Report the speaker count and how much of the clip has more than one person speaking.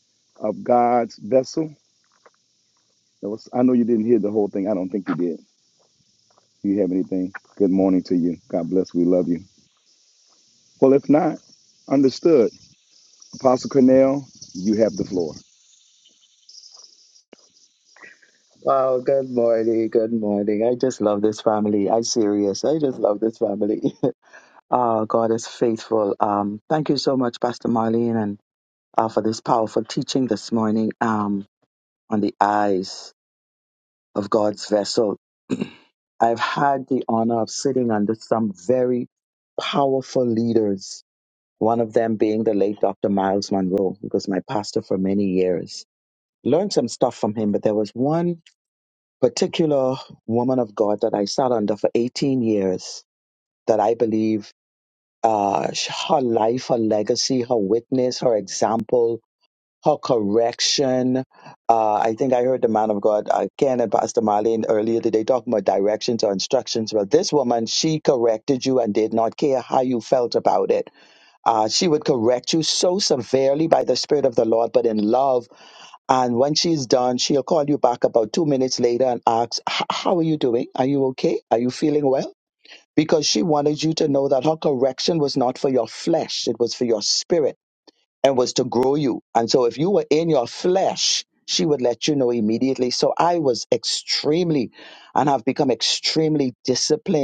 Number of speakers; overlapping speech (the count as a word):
two, no overlap